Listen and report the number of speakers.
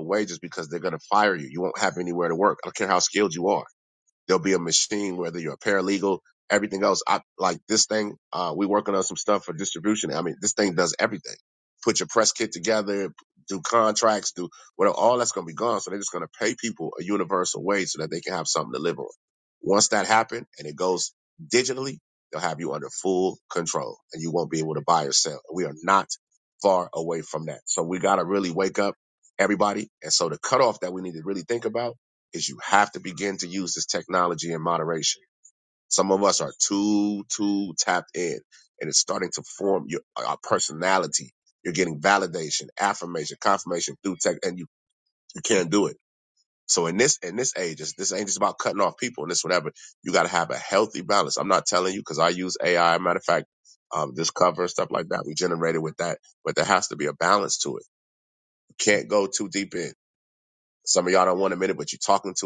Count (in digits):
1